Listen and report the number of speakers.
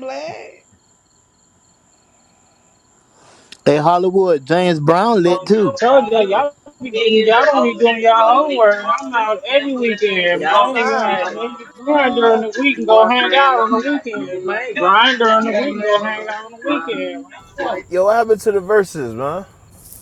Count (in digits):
4